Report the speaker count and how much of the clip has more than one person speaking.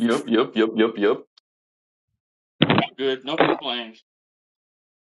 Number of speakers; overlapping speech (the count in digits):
1, no overlap